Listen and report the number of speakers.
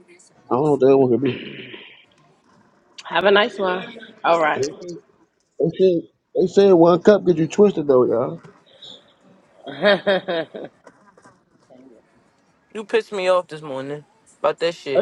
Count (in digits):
3